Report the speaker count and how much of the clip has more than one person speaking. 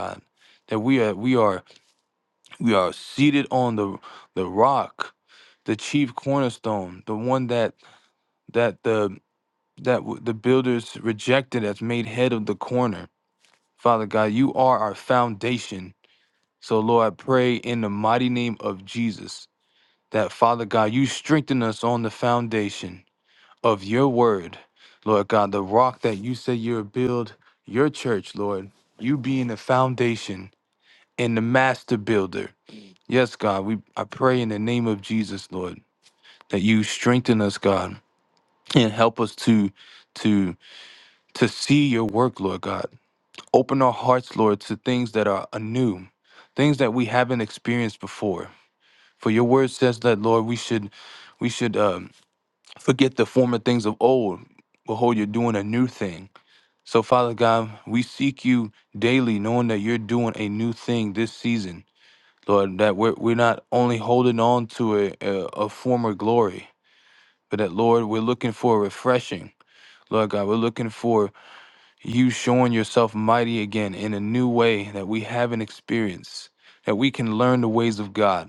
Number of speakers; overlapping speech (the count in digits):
1, no overlap